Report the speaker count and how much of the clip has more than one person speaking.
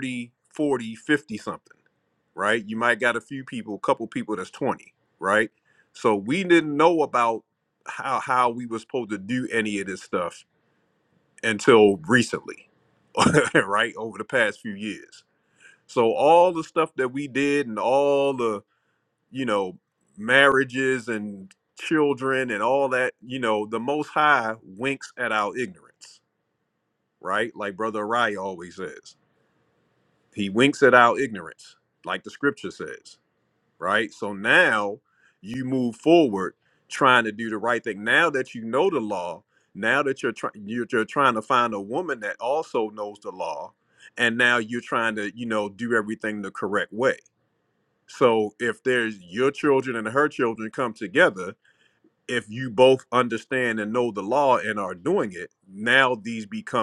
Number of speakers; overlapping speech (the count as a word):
one, no overlap